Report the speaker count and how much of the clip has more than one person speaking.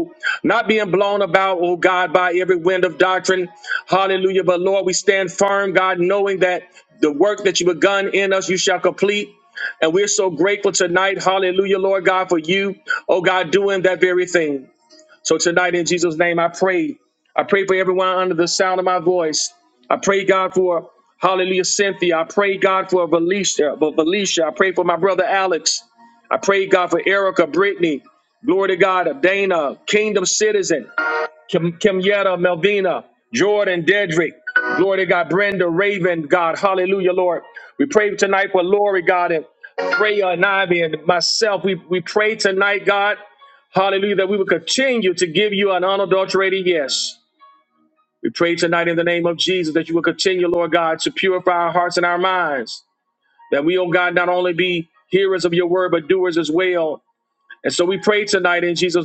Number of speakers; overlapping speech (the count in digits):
1, no overlap